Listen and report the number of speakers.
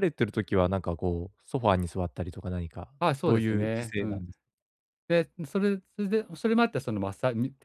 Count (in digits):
2